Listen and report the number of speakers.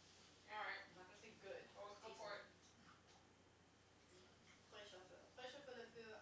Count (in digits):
2